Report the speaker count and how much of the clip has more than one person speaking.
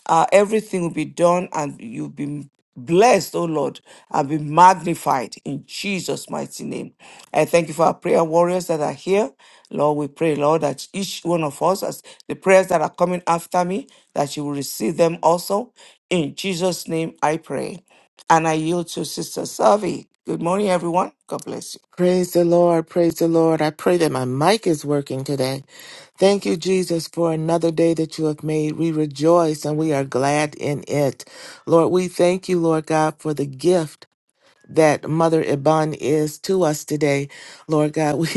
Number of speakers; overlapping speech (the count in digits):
2, no overlap